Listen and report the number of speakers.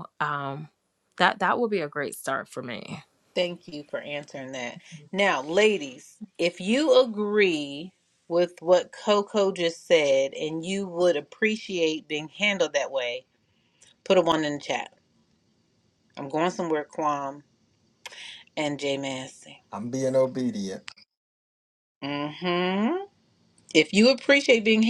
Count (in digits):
3